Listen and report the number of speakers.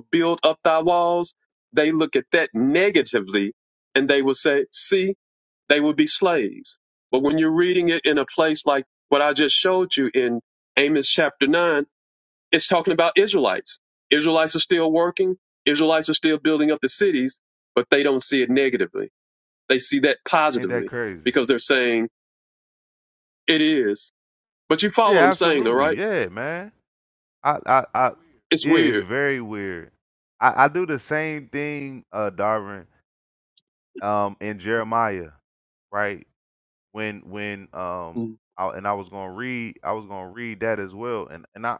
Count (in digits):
2